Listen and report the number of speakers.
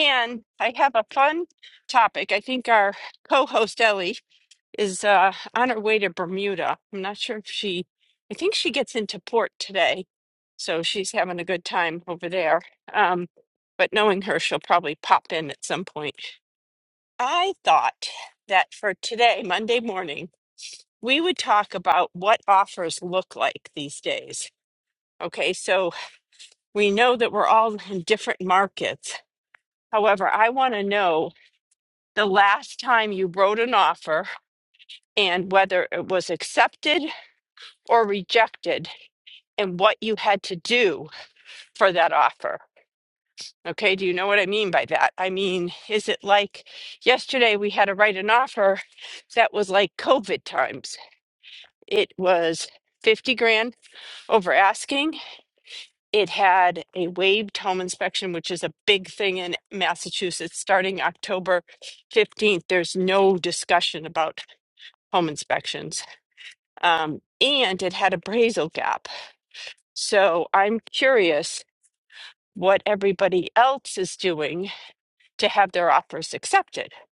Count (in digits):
1